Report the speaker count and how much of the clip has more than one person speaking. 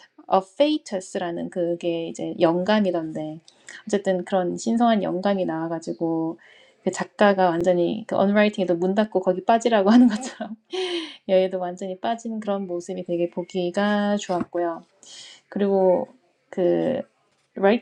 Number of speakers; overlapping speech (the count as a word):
one, no overlap